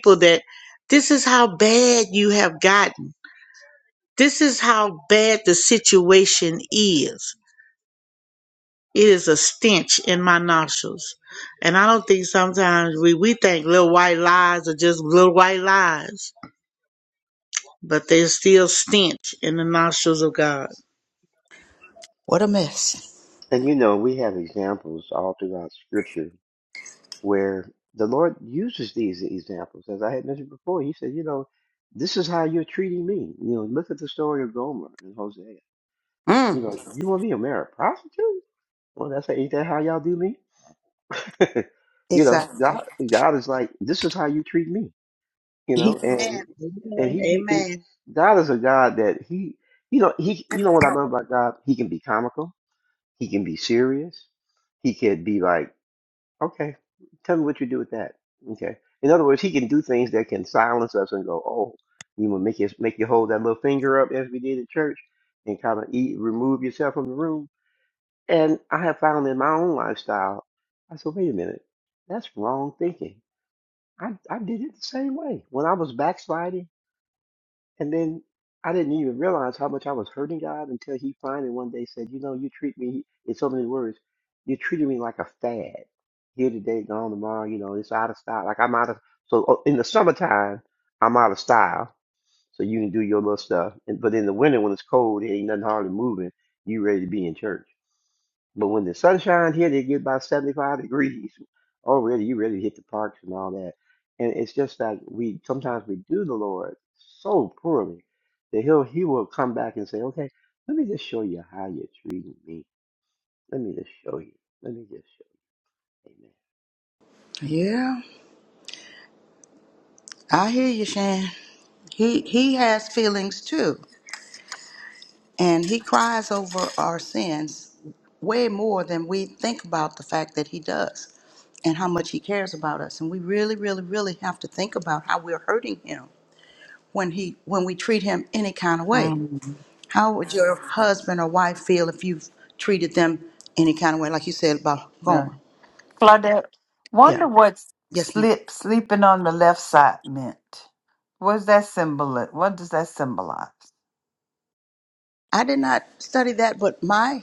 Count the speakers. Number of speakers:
four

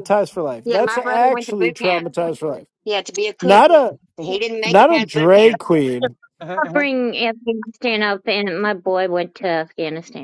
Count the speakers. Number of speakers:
three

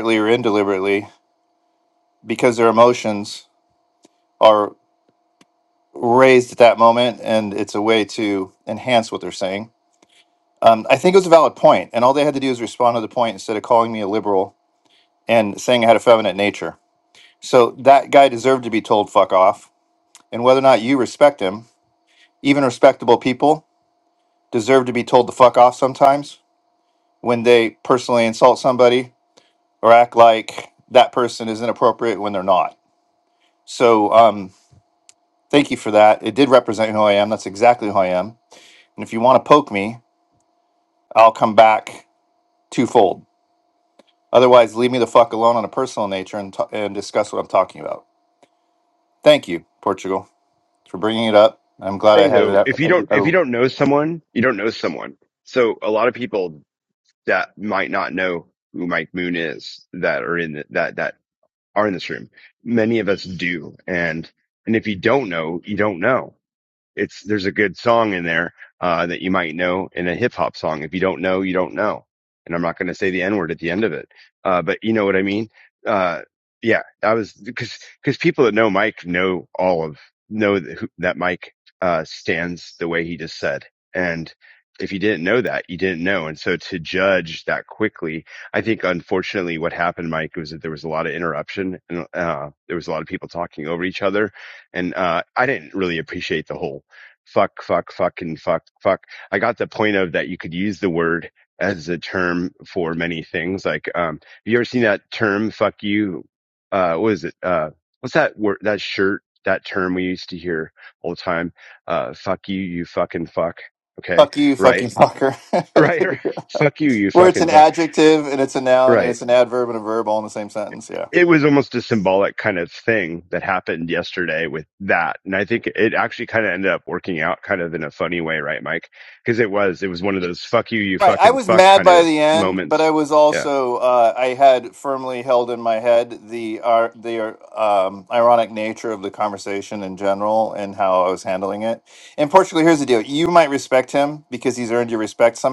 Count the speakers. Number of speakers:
two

